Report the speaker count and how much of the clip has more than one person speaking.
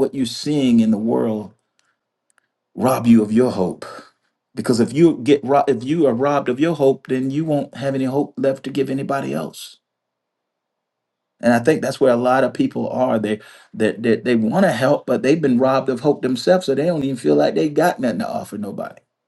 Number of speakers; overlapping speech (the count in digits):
1, no overlap